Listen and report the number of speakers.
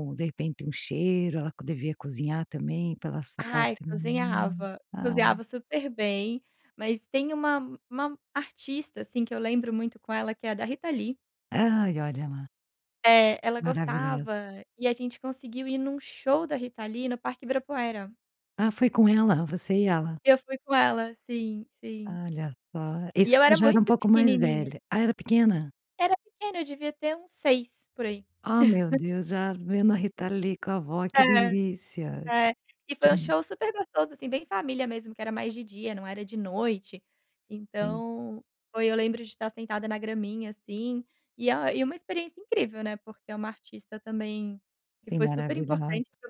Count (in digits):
2